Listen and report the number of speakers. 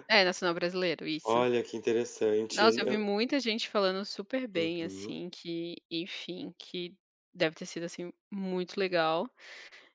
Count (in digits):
2